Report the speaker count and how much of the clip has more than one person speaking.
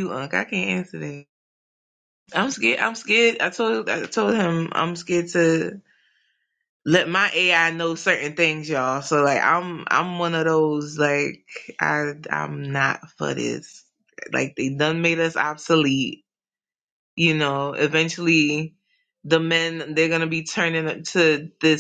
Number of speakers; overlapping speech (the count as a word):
one, no overlap